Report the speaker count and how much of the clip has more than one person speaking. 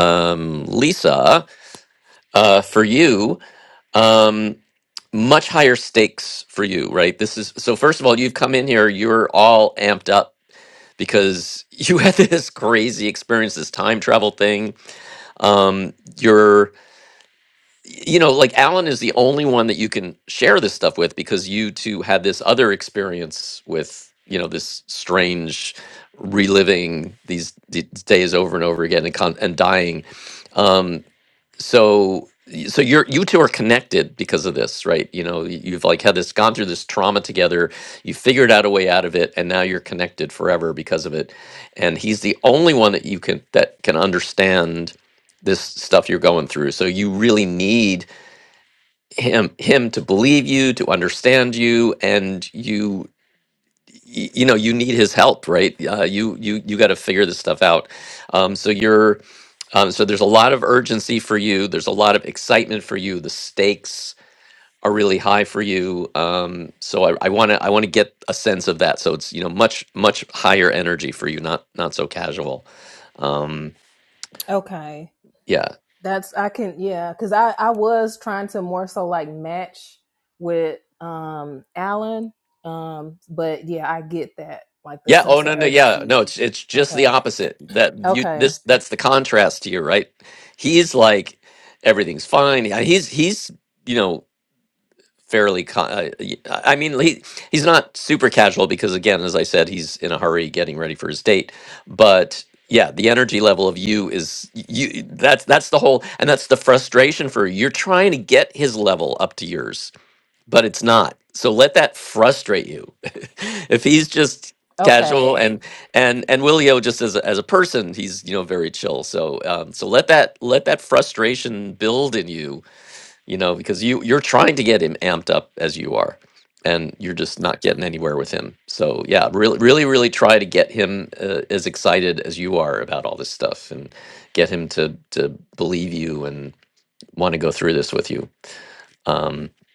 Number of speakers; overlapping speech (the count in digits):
2, about 2%